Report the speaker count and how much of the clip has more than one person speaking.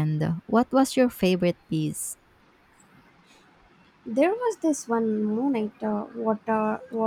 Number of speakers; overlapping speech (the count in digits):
2, no overlap